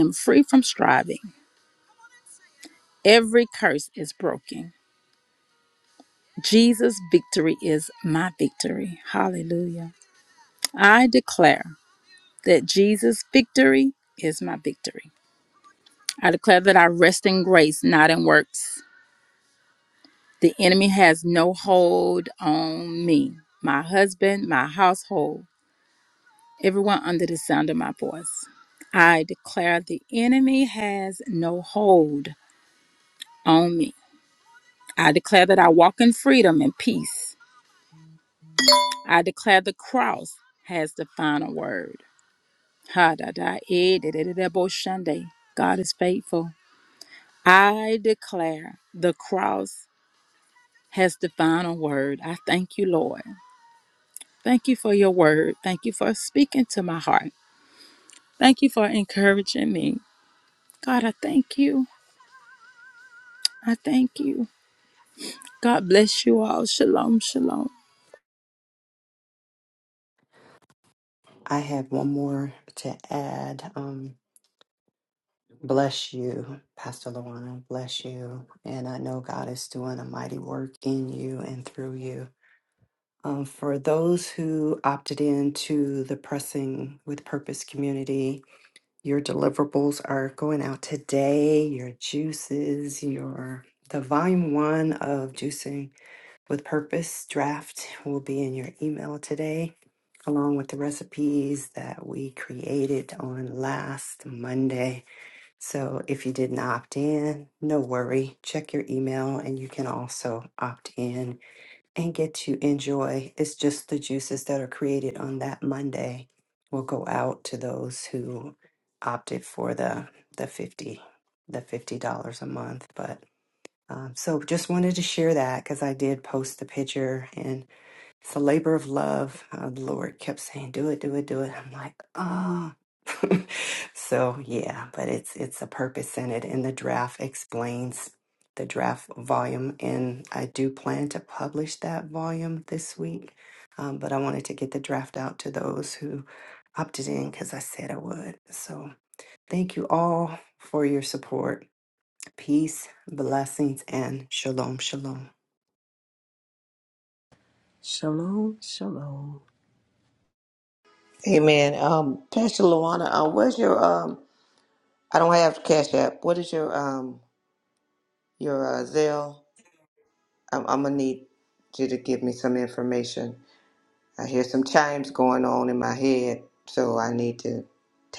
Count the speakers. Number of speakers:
four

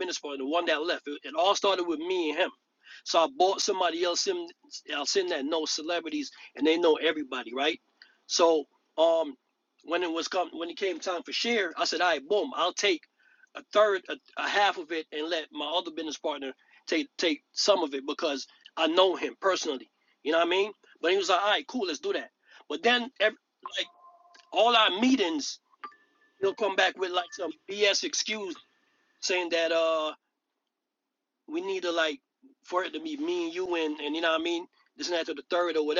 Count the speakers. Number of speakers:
one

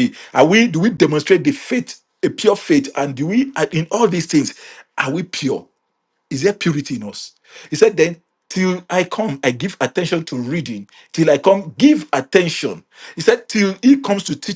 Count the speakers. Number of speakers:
one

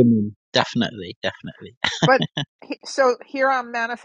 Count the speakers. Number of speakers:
two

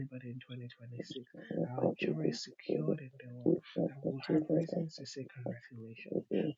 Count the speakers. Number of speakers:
two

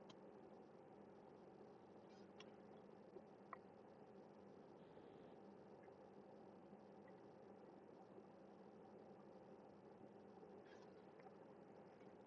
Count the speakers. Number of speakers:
zero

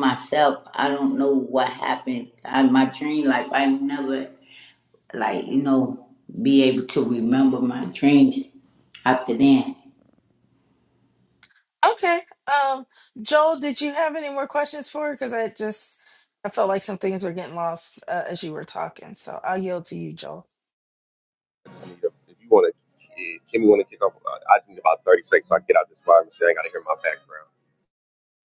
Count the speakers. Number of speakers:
three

